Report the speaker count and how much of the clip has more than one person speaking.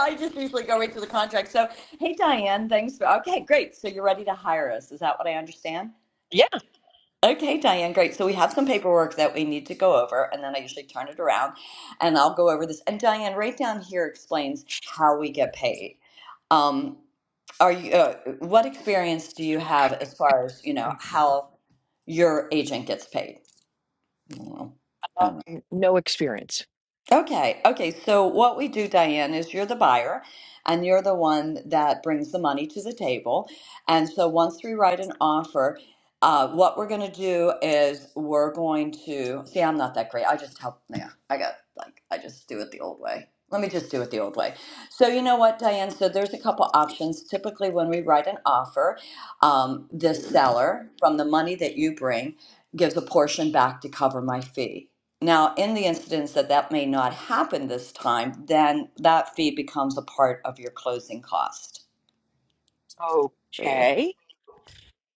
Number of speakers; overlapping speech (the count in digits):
2, under 1%